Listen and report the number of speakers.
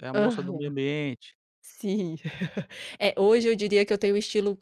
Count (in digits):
2